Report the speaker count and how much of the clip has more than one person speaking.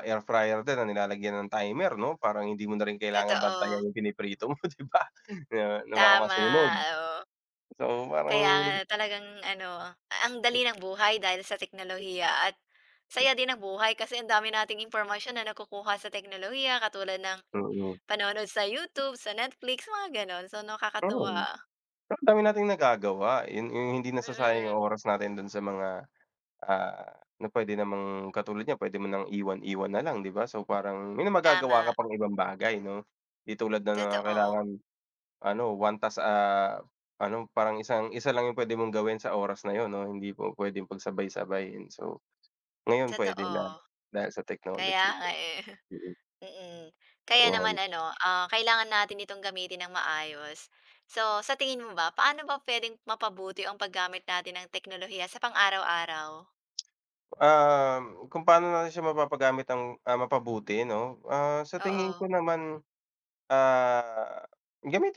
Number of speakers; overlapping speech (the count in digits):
2, about 9%